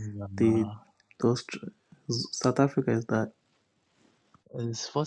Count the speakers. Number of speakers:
2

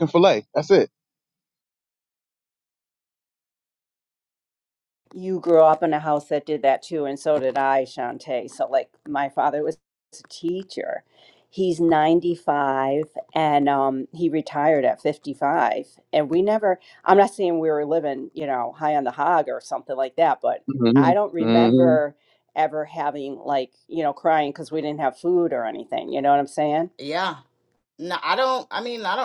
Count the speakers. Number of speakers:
3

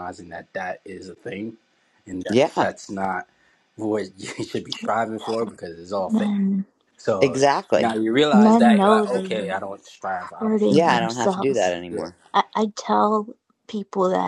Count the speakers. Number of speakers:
3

